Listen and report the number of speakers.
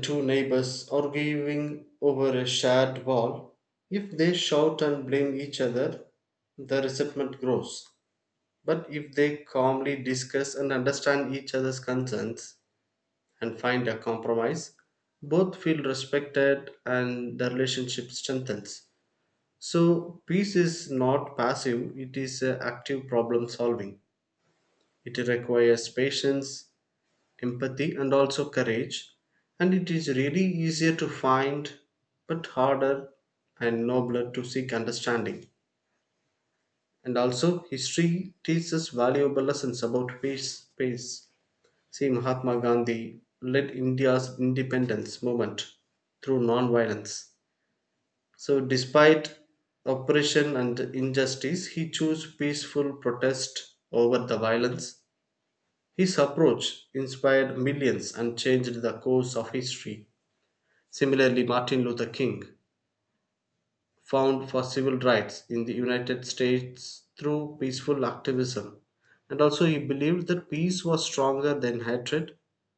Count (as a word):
one